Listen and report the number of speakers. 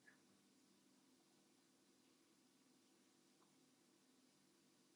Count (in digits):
0